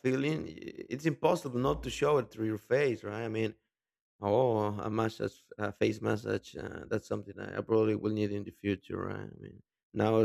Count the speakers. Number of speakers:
1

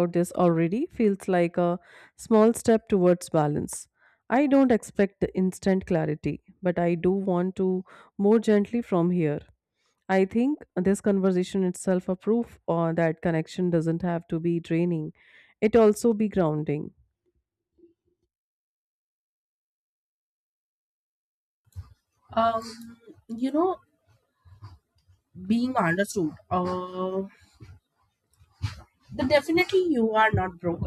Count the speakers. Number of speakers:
2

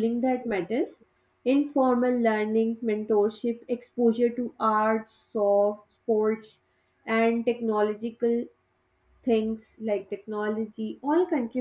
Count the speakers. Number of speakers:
1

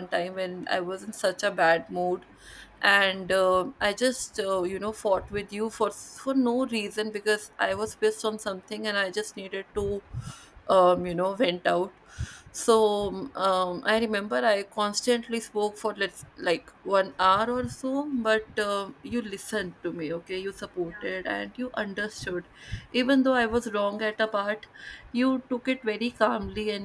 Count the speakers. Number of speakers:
1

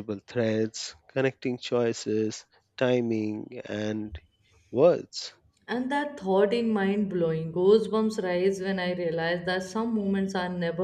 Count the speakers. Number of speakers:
2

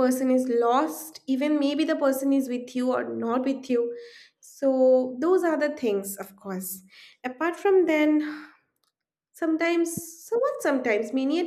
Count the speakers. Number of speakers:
1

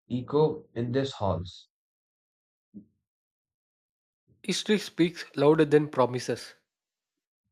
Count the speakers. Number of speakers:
2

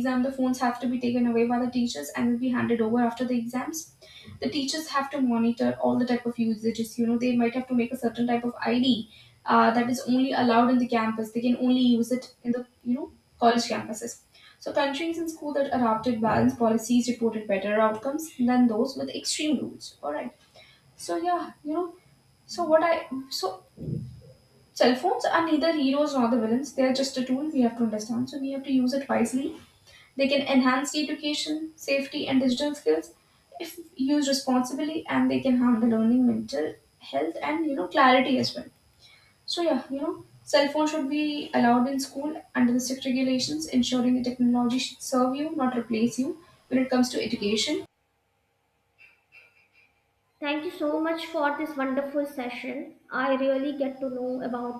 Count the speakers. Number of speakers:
2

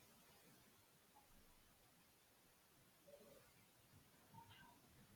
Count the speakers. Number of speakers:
0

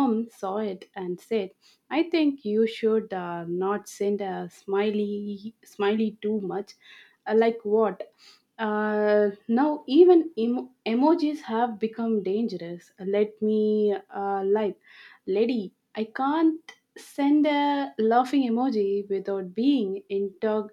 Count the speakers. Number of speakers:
1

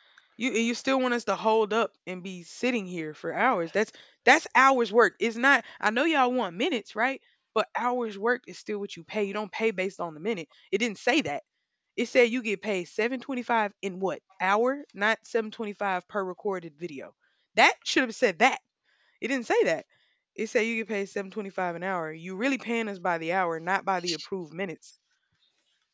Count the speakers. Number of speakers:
1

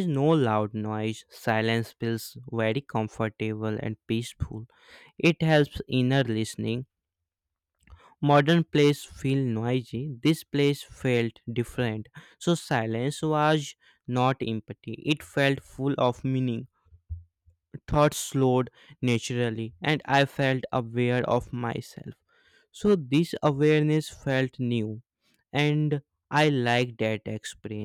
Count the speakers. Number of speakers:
1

